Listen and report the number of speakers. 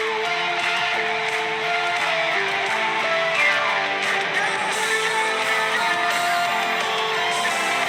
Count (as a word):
zero